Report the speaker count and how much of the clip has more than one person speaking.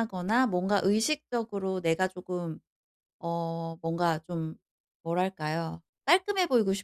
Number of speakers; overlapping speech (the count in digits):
1, no overlap